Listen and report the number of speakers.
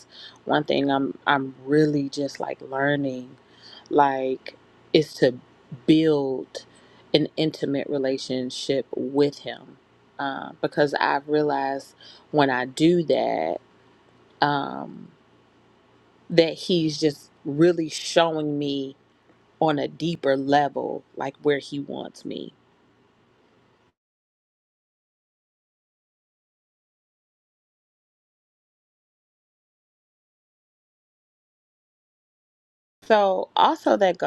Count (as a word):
one